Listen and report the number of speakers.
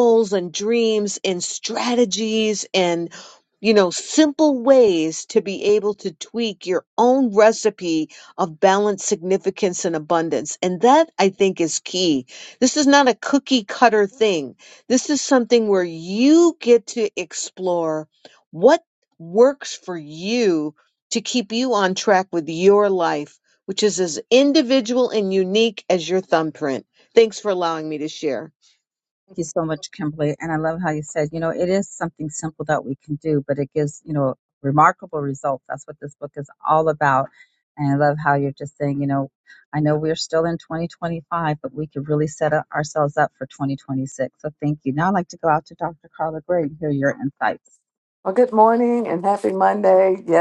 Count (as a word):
three